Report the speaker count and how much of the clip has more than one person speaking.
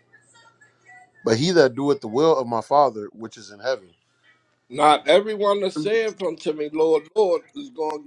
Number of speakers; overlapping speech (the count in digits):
2, no overlap